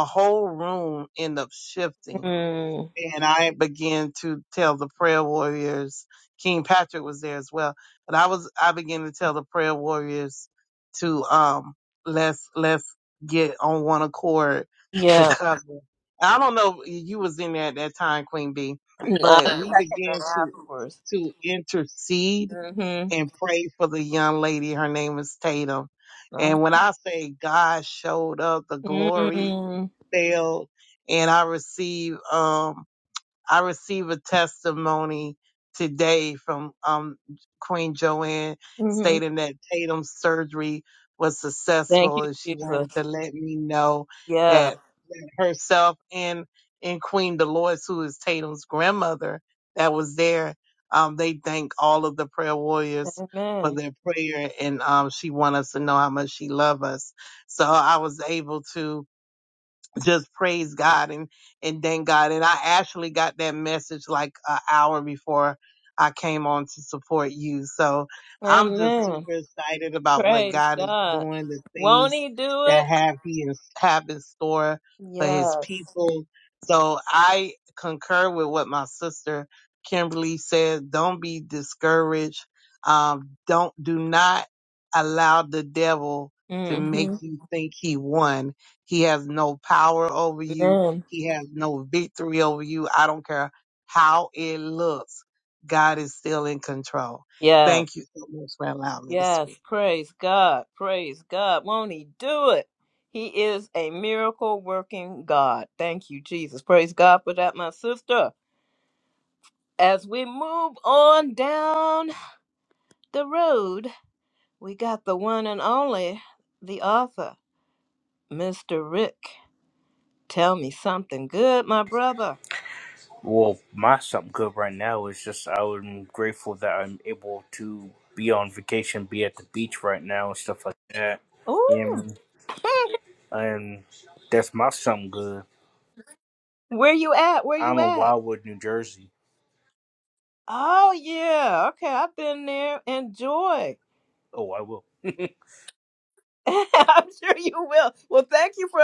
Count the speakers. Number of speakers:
three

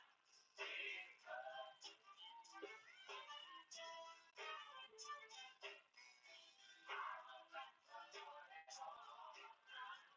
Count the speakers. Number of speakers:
zero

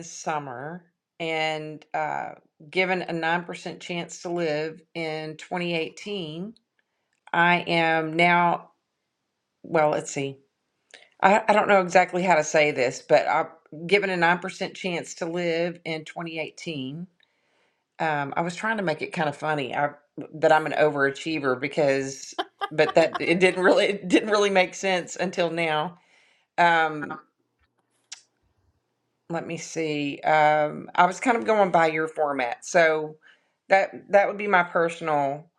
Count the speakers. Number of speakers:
one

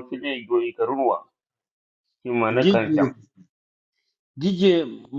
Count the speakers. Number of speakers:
two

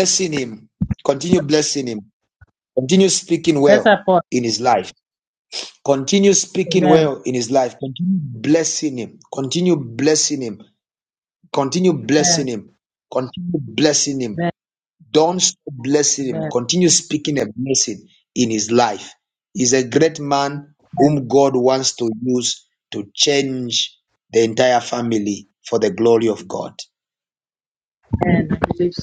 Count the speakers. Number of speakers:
two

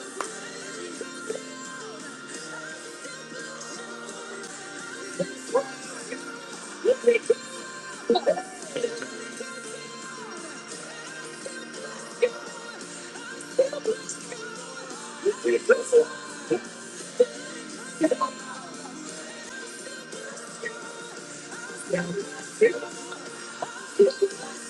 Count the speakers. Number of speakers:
zero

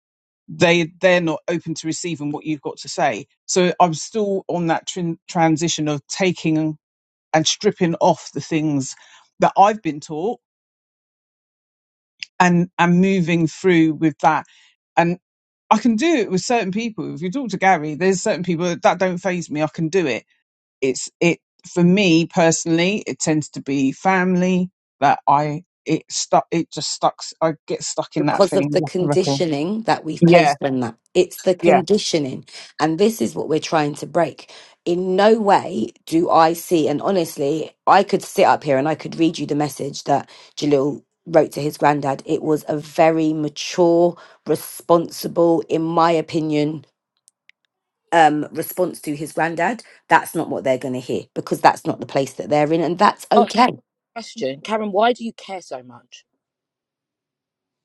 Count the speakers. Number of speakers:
three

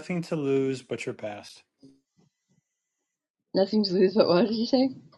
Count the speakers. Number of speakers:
two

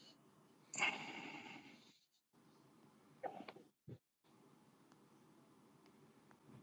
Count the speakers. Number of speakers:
zero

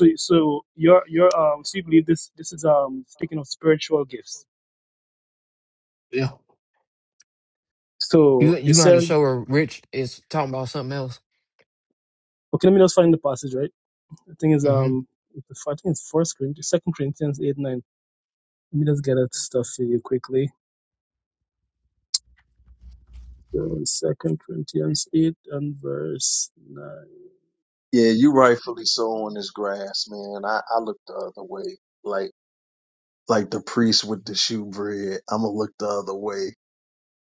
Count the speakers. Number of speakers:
three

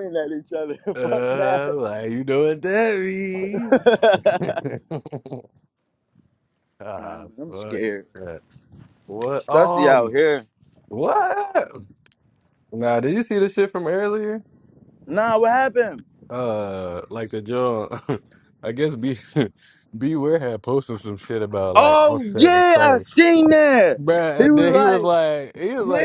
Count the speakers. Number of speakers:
two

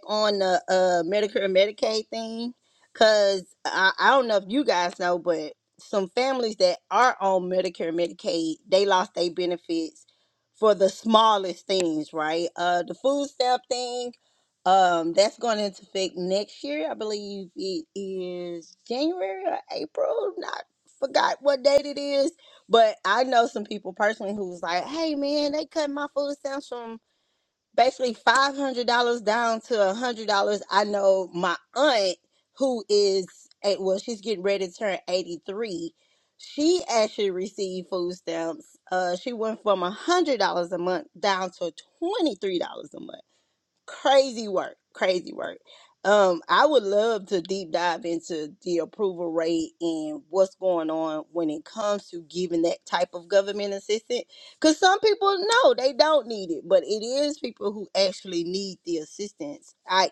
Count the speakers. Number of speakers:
one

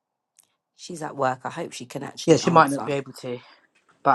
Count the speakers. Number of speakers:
two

